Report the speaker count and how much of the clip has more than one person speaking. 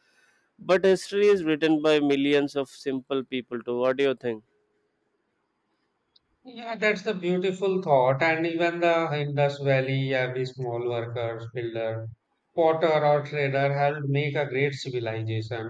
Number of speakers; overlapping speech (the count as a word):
two, no overlap